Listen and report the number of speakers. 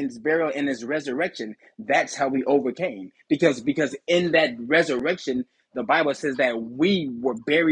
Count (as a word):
one